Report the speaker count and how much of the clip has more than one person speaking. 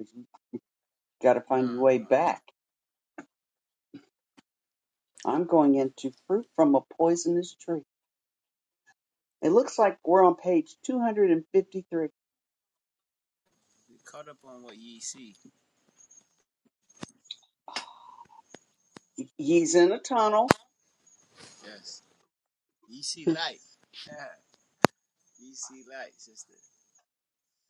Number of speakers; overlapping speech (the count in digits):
2, about 3%